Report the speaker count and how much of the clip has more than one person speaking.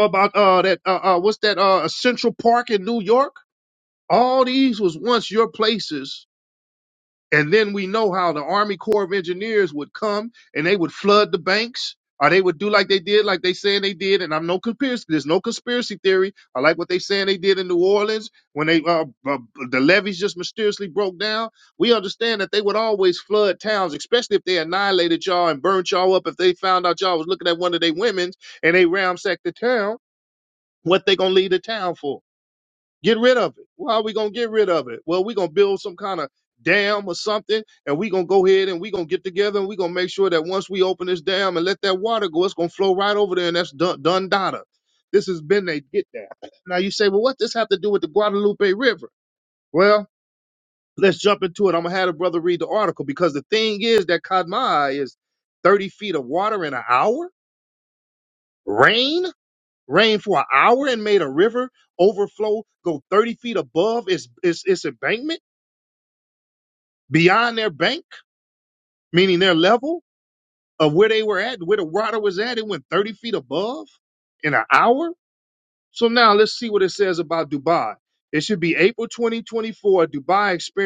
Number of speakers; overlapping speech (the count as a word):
one, no overlap